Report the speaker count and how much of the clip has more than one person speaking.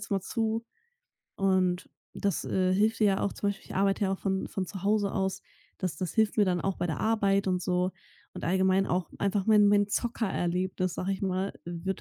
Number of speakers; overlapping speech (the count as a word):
one, no overlap